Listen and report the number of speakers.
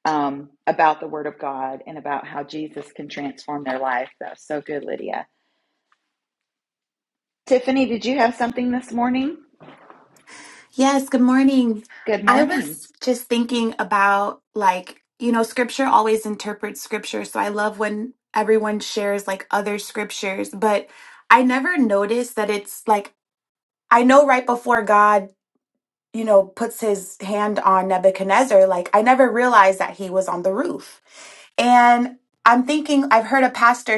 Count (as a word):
two